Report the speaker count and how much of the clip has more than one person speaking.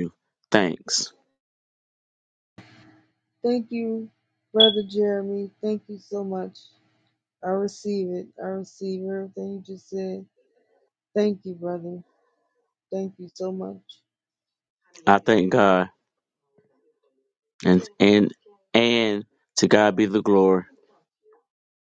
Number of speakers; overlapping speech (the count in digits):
2, no overlap